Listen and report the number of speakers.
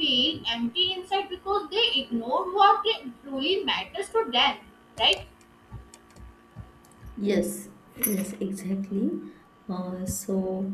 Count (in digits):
2